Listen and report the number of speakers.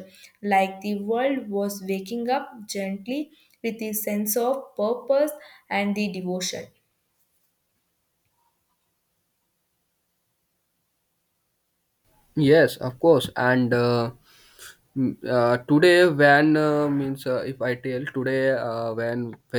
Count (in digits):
2